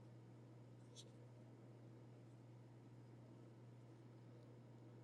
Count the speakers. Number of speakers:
0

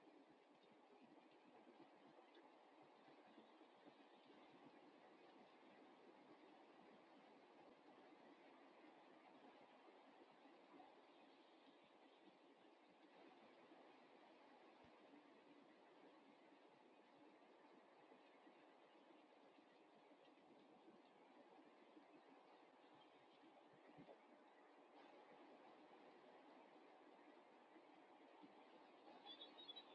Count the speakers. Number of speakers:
0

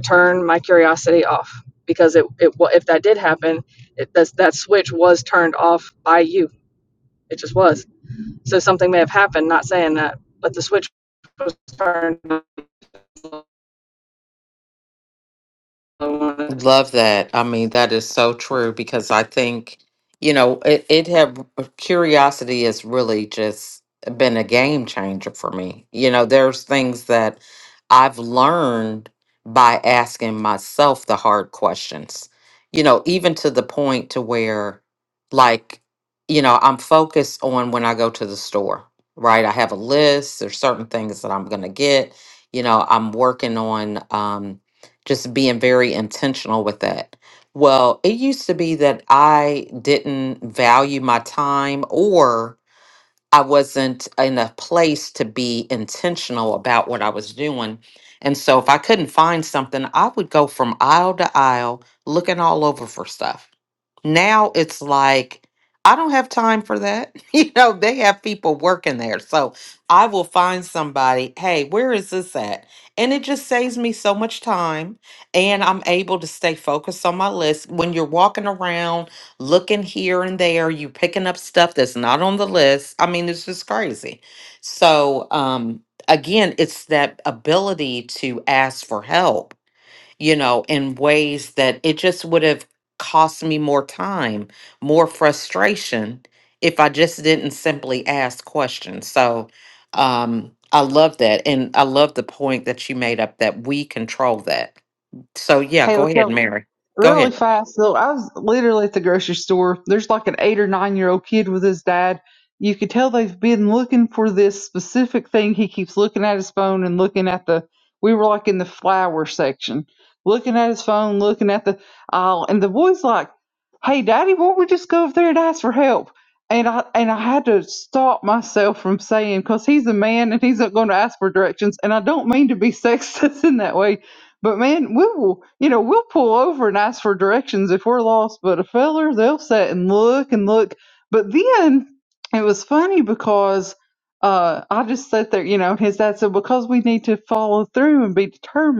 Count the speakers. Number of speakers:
3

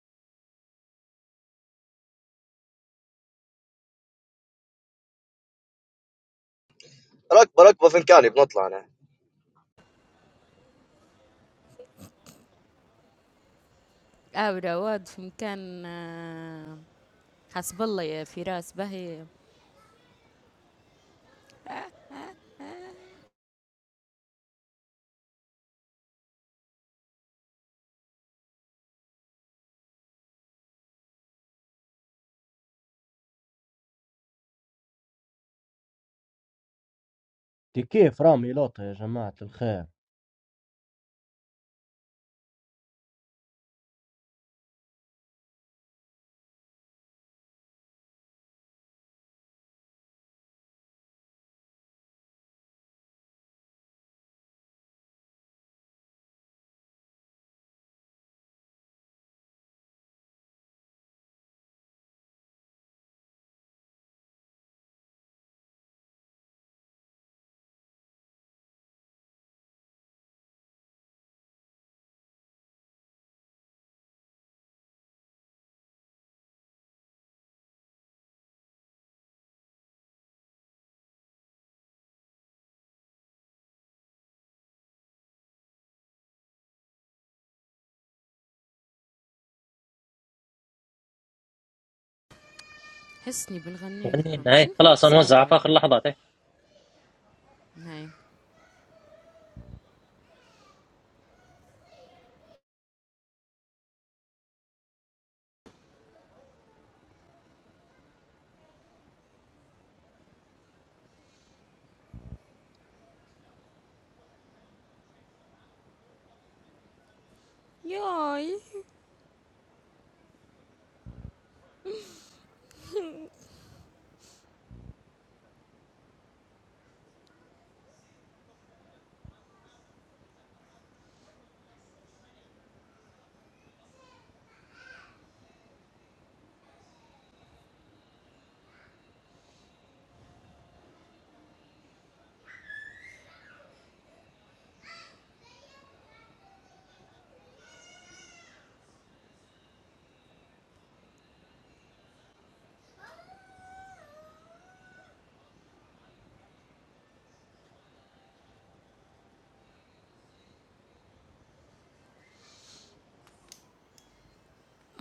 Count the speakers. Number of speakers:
4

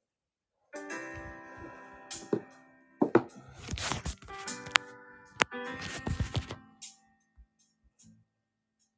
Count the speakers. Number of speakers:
0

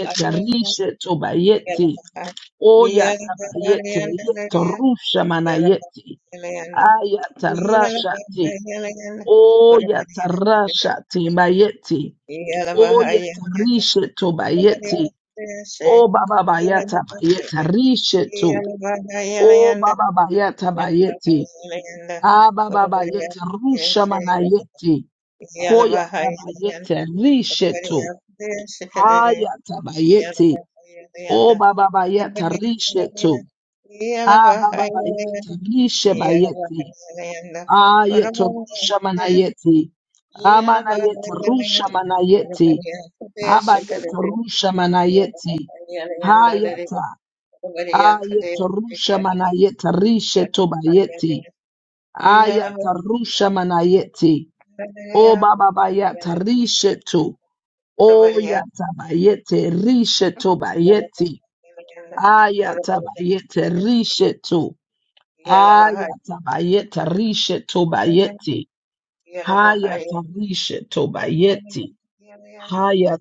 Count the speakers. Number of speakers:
2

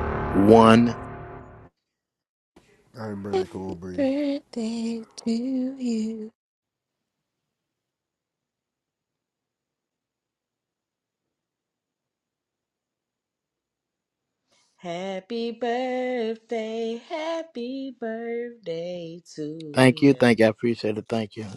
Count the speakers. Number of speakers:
4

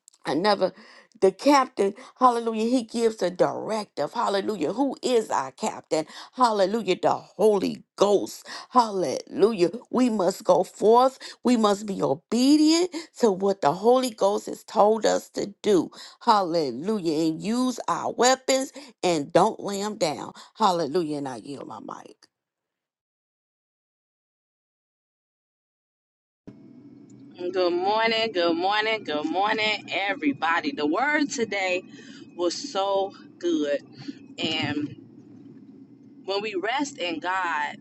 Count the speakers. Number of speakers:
2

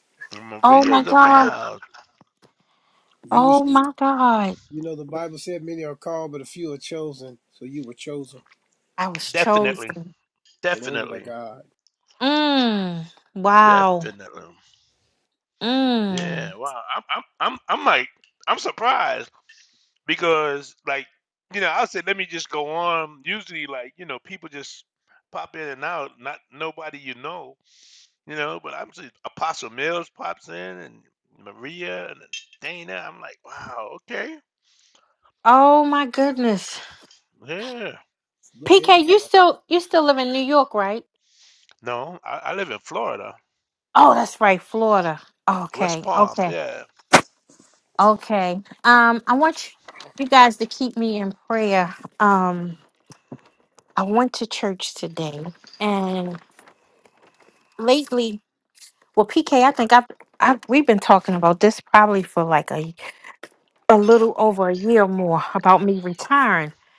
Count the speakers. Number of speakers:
3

